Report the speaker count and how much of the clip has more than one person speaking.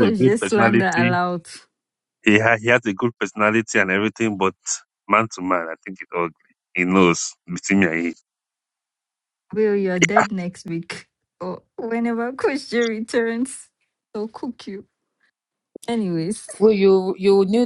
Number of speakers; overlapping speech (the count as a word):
three, about 7%